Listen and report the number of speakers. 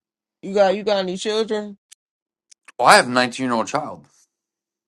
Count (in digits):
2